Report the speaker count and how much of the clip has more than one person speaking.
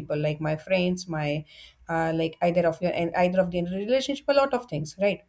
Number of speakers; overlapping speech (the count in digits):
1, no overlap